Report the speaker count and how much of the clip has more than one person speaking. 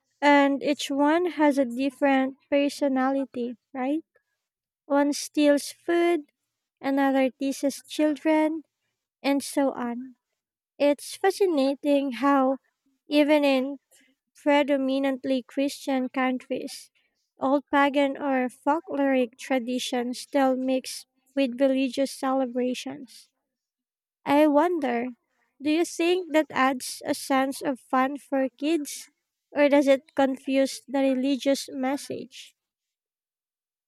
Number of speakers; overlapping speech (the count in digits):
1, no overlap